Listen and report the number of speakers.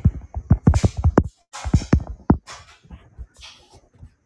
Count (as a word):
zero